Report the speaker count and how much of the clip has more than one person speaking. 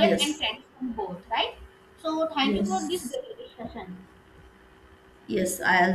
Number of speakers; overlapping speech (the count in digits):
2, about 13%